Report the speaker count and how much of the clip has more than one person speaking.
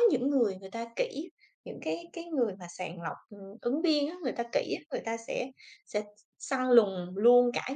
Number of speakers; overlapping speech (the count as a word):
one, no overlap